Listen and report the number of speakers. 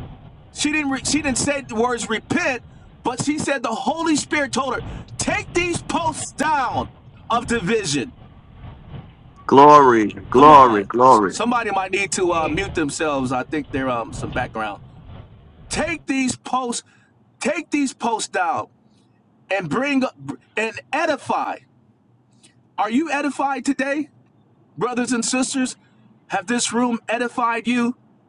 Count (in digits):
2